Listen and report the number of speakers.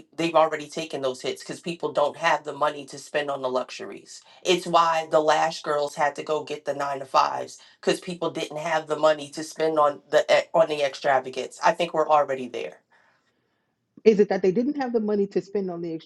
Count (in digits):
2